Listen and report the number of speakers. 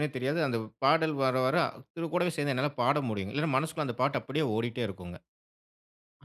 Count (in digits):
1